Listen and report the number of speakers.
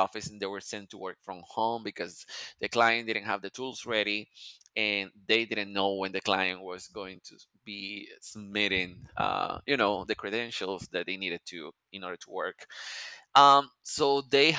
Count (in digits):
1